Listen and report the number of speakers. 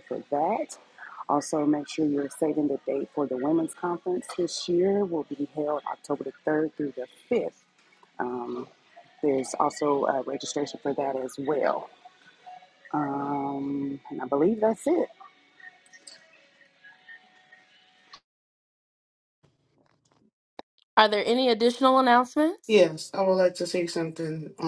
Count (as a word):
three